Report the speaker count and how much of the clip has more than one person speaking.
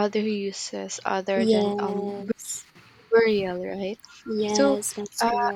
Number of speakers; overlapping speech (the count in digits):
2, about 28%